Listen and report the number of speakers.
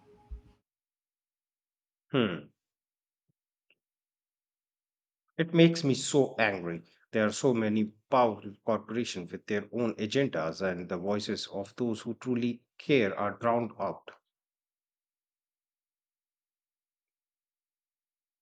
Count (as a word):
one